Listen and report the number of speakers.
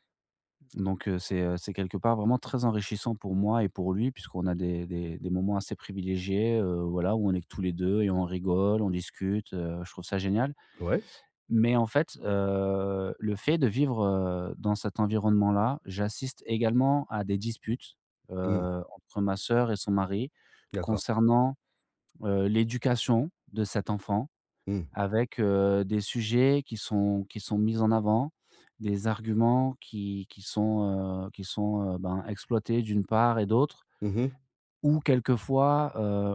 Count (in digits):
2